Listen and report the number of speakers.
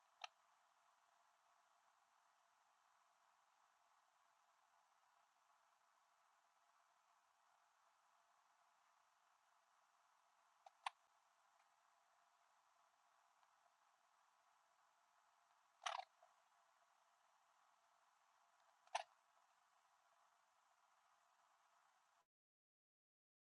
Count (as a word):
zero